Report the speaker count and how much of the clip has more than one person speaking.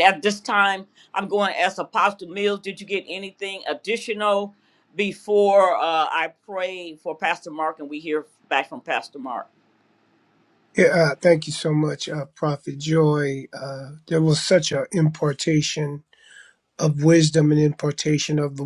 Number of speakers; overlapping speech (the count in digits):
2, no overlap